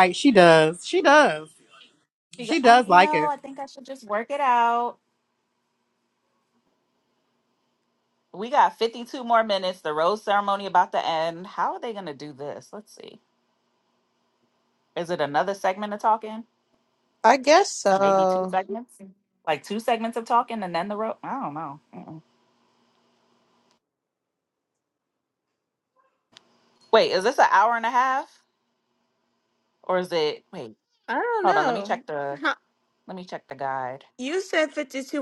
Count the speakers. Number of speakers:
four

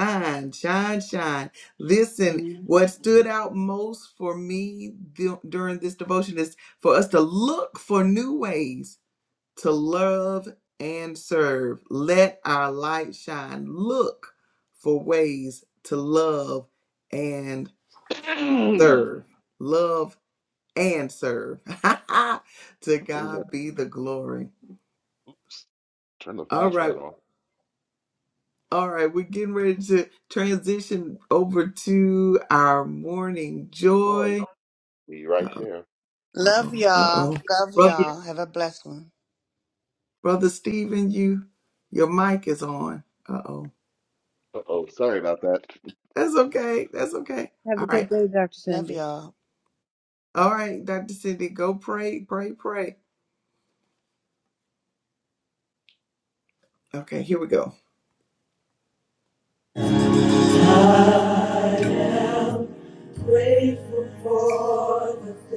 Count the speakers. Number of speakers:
four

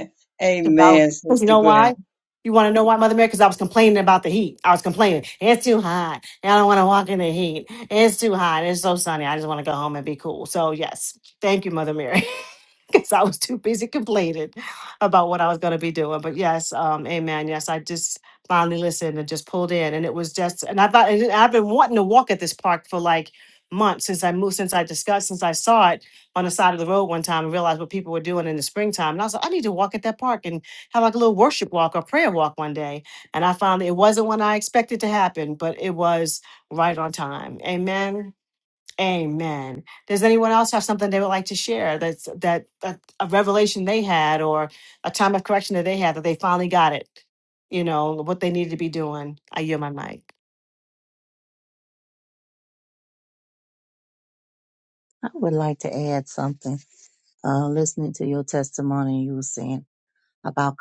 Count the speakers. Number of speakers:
three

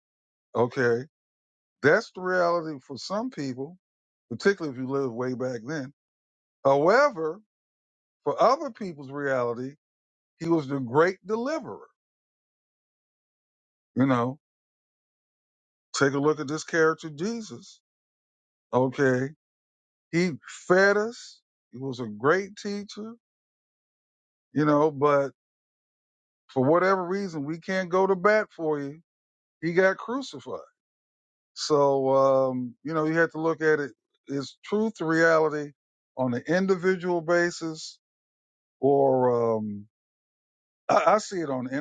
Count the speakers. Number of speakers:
one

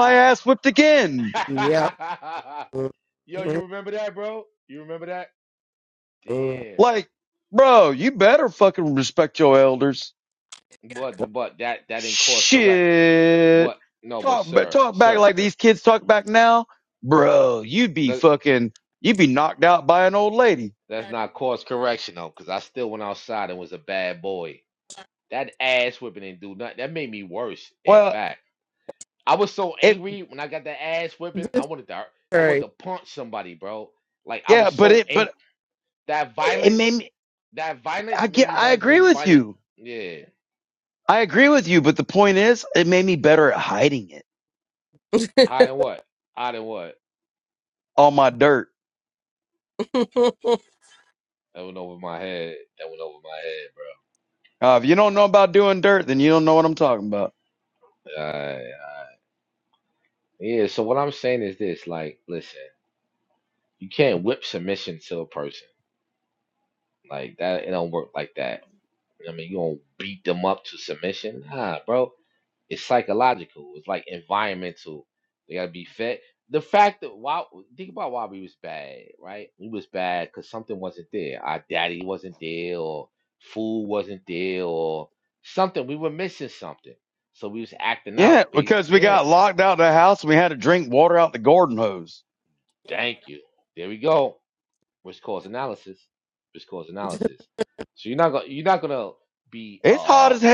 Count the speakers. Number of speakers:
three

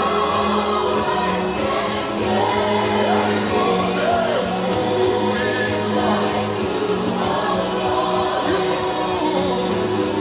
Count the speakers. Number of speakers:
zero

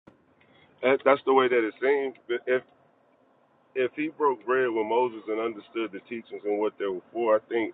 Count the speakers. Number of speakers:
one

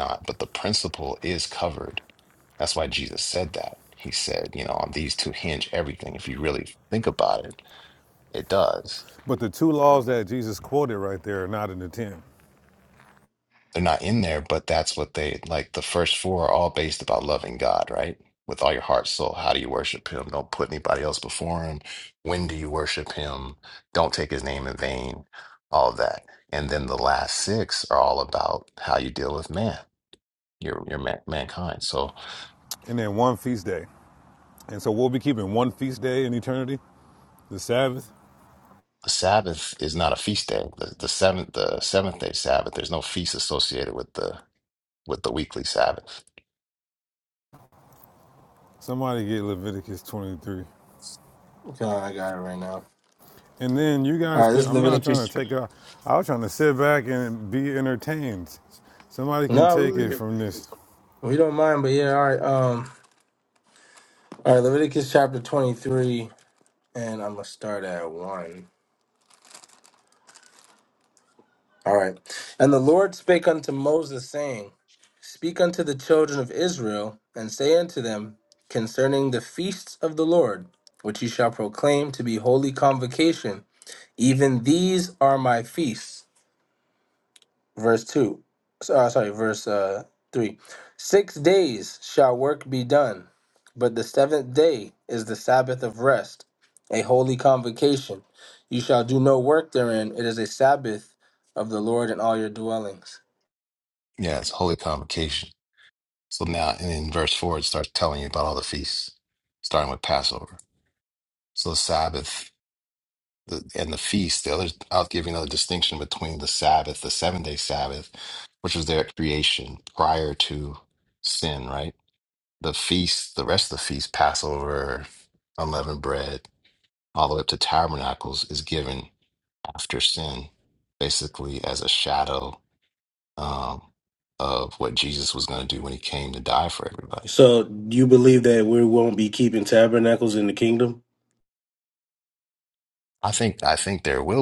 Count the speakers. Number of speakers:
four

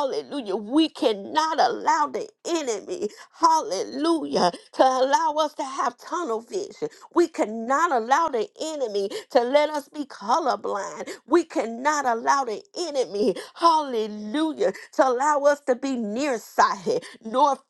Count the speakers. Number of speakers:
one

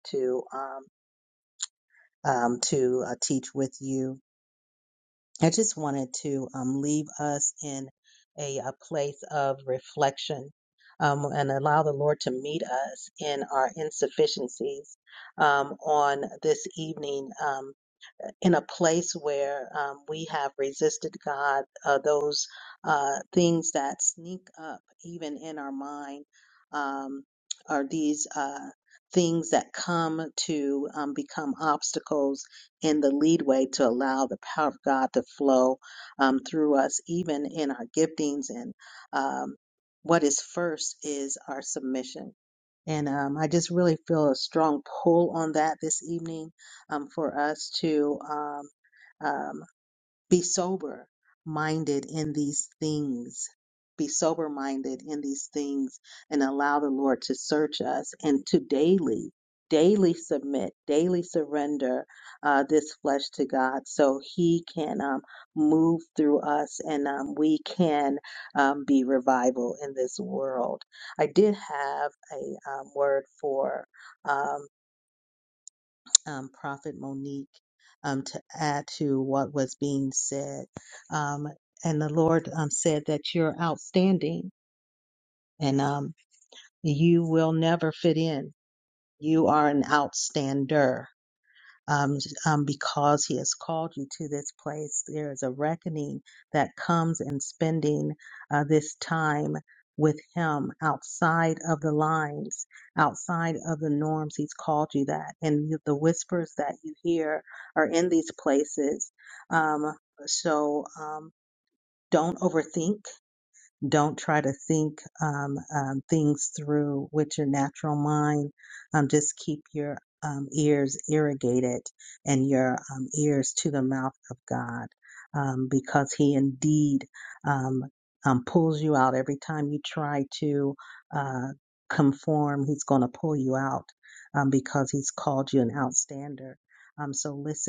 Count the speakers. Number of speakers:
one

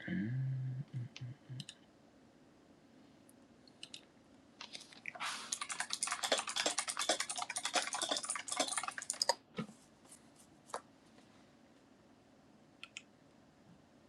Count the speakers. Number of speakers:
zero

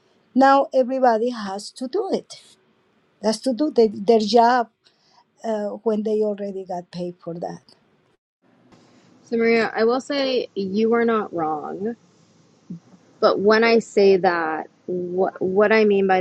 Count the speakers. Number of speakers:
two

